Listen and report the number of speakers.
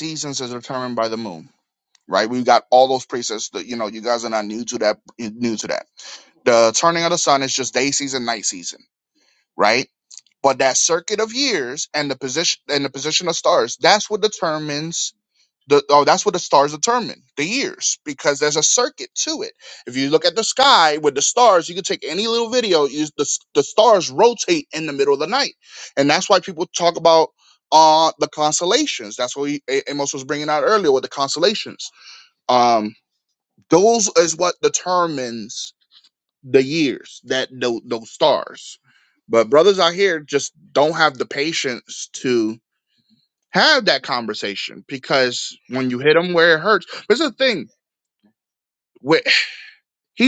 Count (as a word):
one